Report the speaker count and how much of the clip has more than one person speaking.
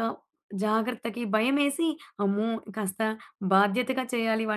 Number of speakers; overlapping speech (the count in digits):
1, no overlap